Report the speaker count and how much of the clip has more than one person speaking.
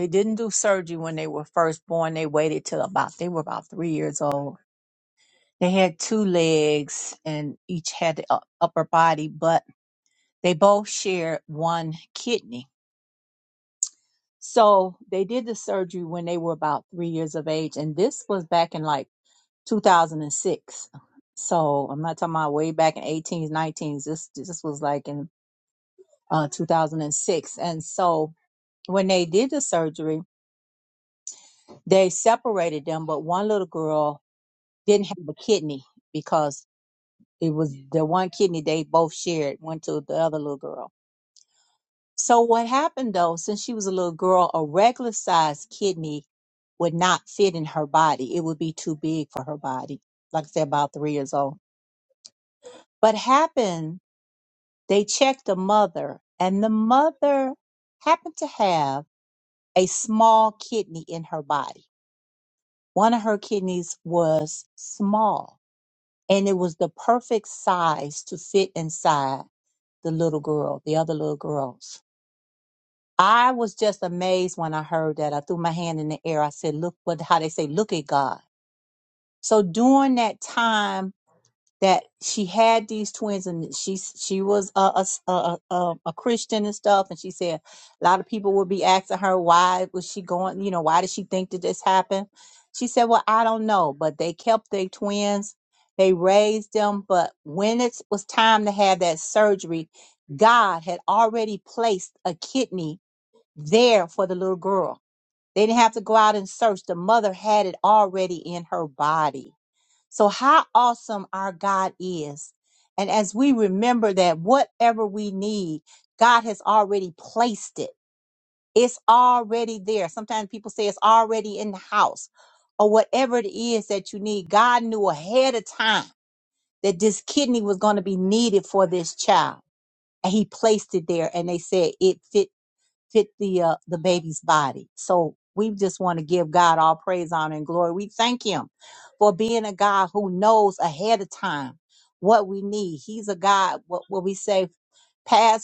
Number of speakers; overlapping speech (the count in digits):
1, no overlap